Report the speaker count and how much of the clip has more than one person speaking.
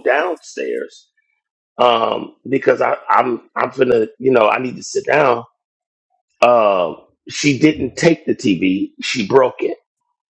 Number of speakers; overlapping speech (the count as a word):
one, no overlap